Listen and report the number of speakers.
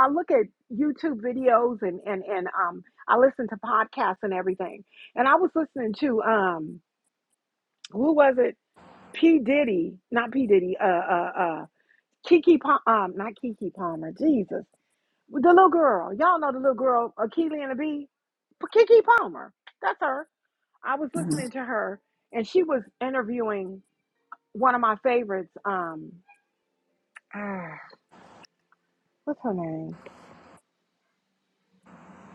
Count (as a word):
one